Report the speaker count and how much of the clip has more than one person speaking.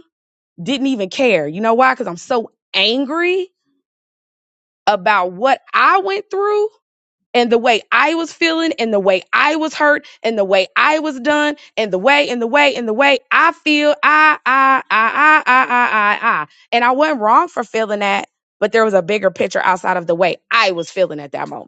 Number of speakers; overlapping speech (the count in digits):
1, no overlap